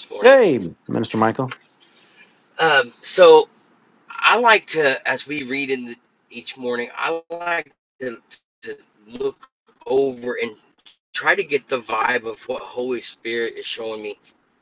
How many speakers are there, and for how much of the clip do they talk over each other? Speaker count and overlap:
2, about 1%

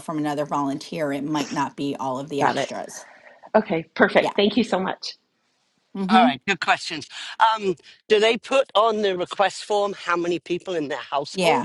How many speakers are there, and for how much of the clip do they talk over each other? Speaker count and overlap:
3, about 9%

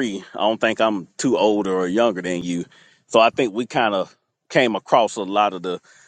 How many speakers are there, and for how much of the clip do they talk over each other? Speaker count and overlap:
1, no overlap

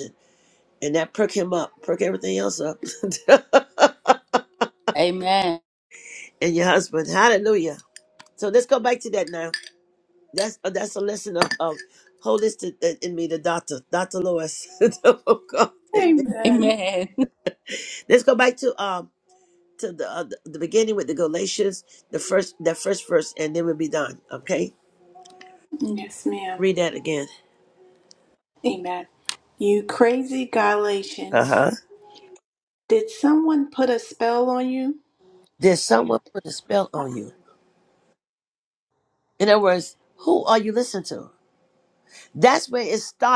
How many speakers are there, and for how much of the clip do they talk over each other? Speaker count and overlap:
3, about 2%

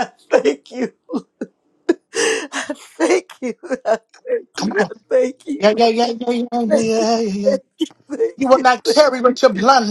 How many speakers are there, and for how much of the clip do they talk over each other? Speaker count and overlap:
2, about 11%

